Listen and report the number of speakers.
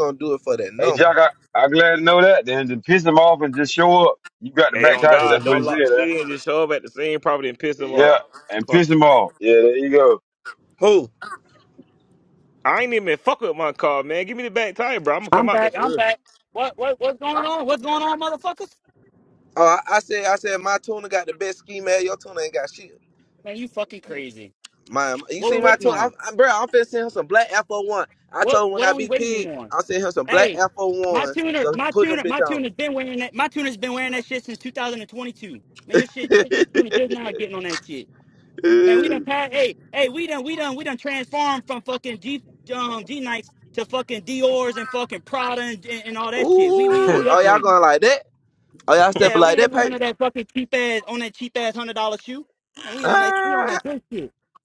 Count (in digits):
4